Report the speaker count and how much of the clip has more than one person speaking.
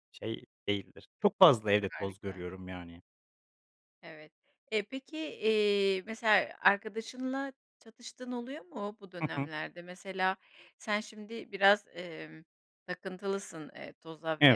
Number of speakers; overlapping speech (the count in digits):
2, about 7%